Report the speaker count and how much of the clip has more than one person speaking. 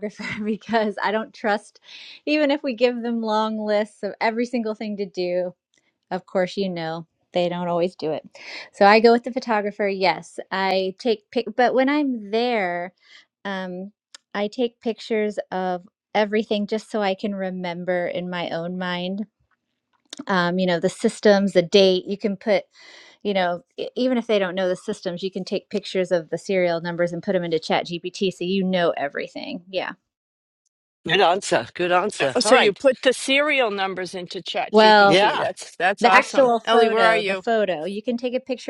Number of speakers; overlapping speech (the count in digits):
3, about 7%